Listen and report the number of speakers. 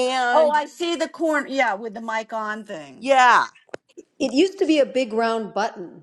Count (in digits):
3